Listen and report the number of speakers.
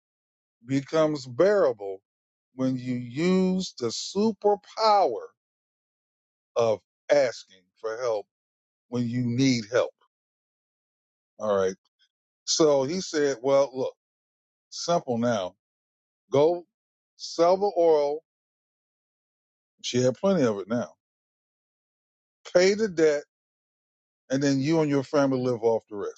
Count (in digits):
1